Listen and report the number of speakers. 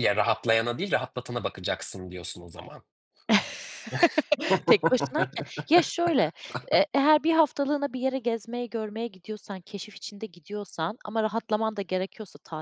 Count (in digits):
2